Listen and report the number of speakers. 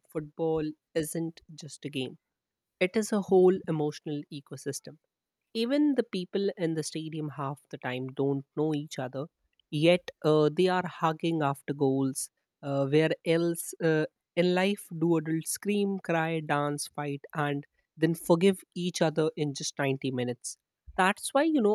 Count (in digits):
1